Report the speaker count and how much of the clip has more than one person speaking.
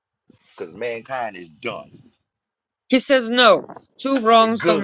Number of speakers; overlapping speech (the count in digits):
2, about 9%